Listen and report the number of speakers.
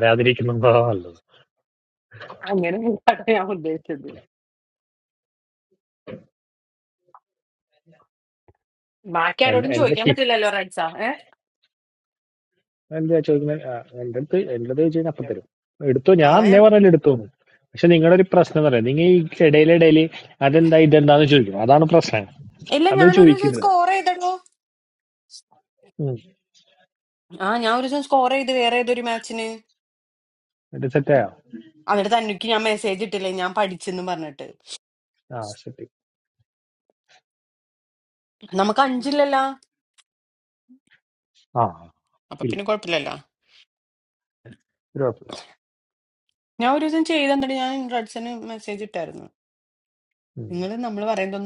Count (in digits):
2